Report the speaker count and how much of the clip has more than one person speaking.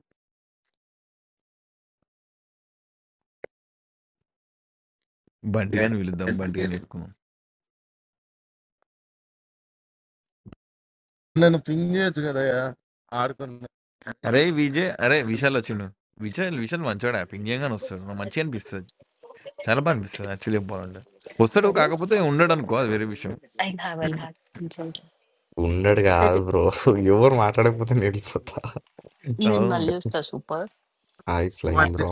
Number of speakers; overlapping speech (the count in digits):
4, about 4%